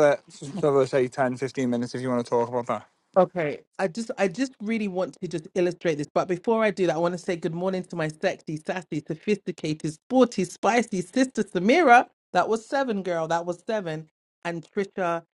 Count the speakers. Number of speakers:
2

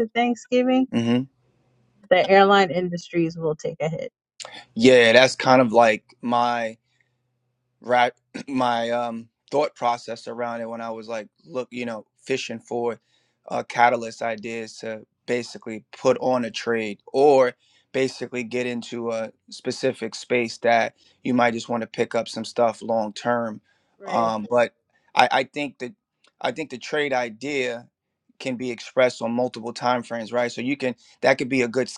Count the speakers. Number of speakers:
2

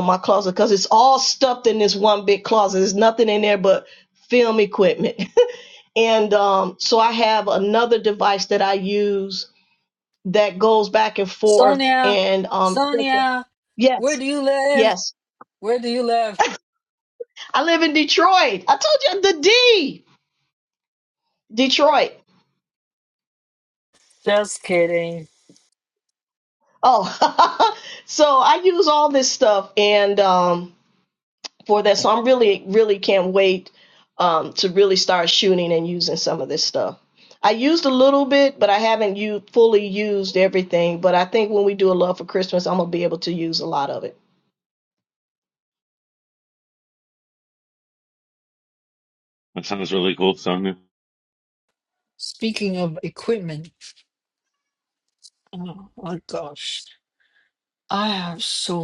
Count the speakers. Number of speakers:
3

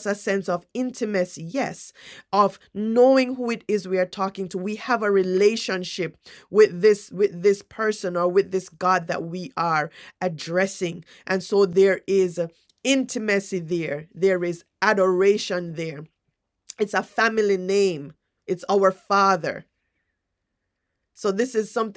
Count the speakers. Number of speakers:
1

